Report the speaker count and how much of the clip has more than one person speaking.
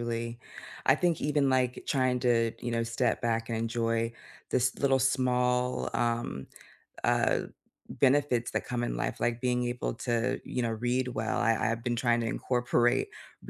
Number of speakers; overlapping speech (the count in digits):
1, no overlap